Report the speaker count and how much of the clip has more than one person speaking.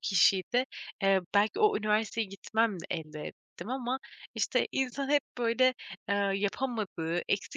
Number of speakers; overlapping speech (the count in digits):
1, no overlap